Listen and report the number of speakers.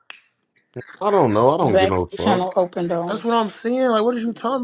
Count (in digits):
3